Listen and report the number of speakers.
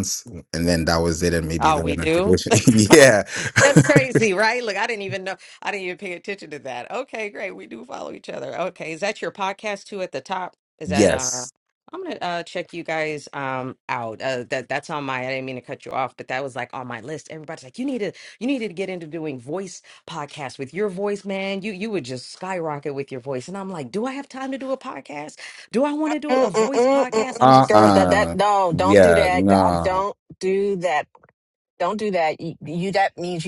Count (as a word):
three